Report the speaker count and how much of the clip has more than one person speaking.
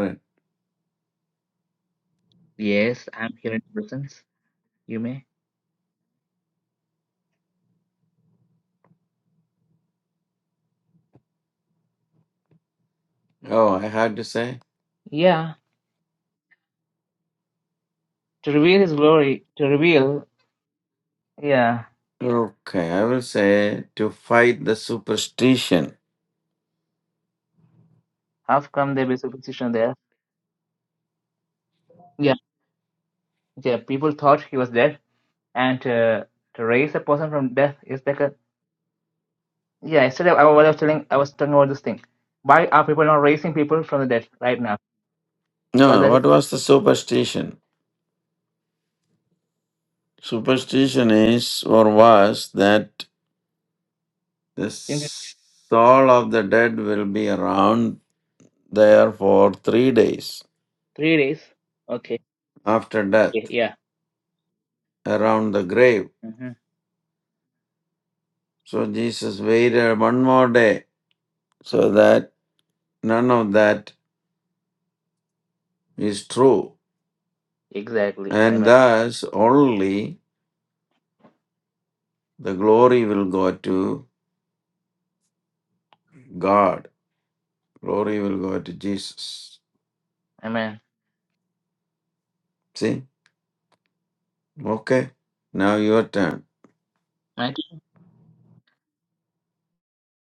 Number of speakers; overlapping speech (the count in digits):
2, about 1%